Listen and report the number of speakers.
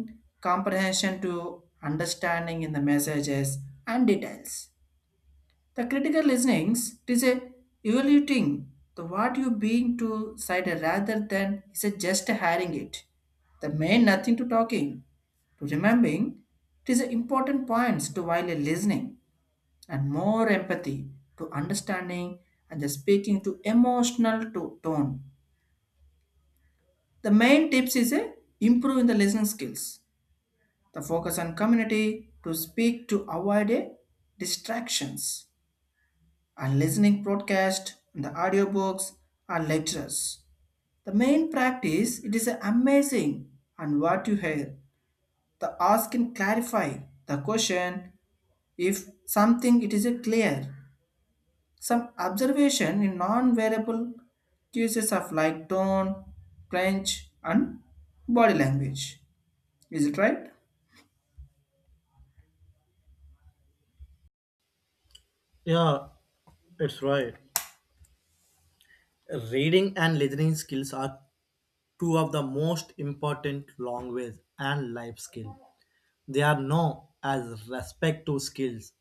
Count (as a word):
two